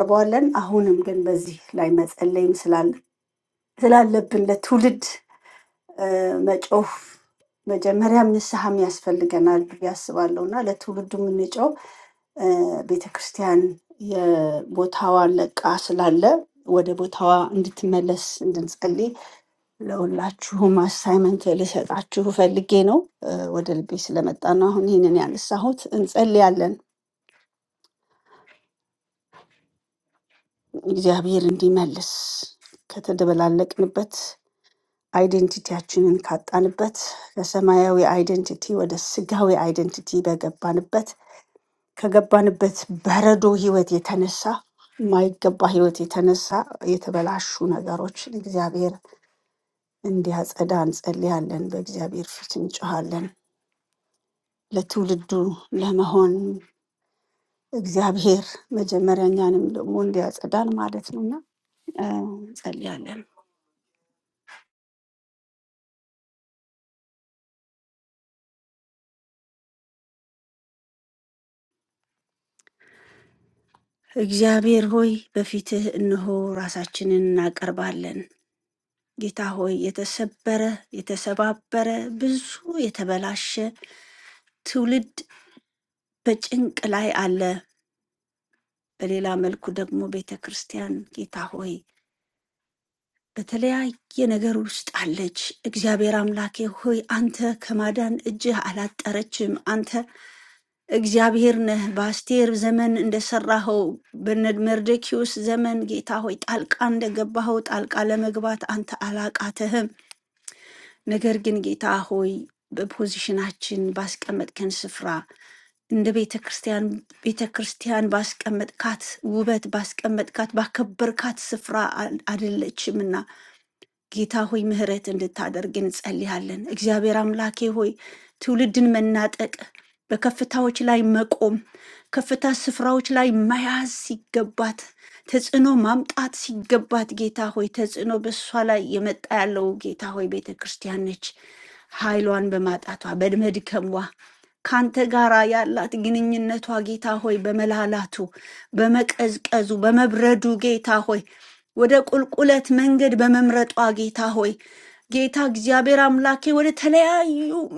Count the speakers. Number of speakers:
one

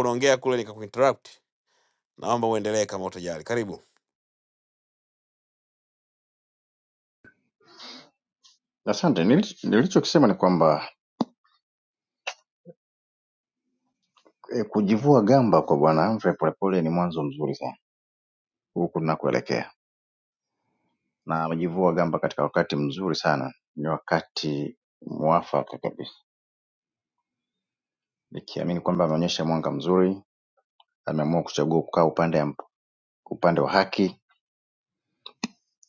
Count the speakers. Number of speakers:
two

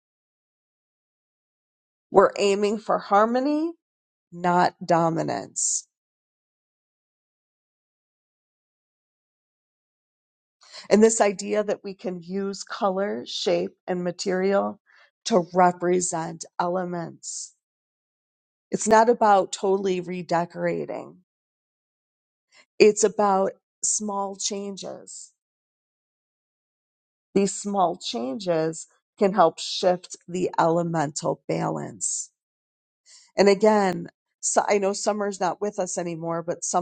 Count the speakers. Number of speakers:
one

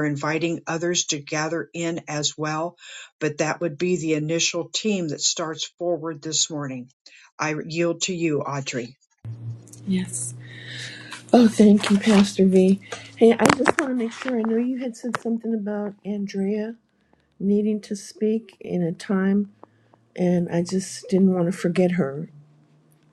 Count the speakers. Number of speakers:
two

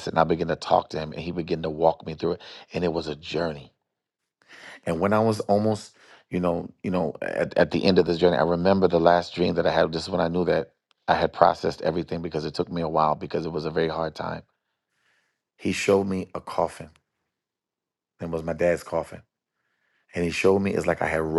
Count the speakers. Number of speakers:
one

